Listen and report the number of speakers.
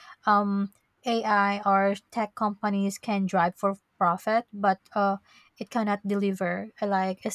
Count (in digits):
1